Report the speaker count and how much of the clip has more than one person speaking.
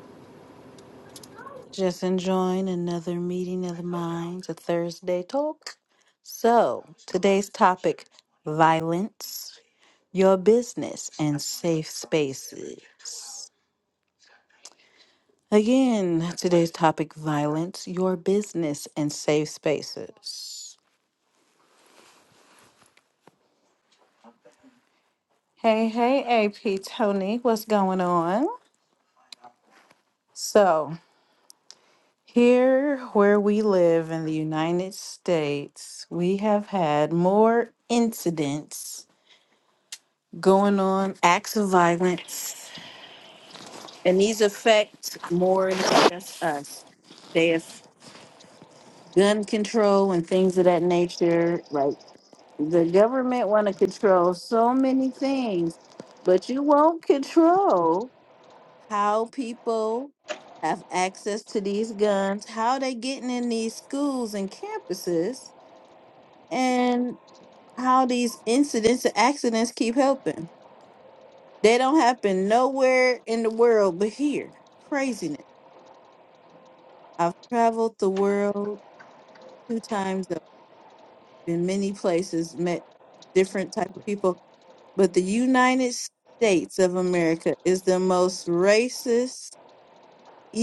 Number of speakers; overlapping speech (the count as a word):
one, no overlap